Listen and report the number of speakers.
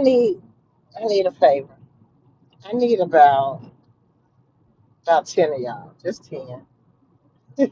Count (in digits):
1